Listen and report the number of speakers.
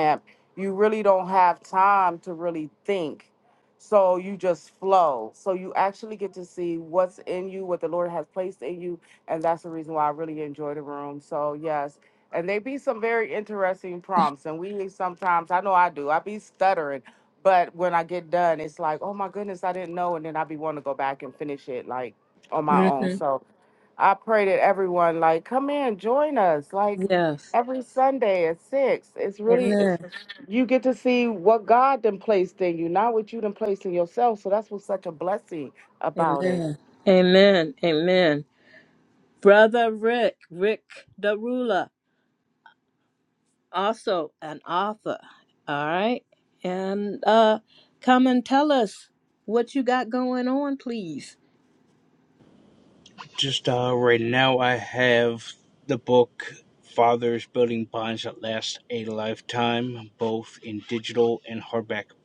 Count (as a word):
three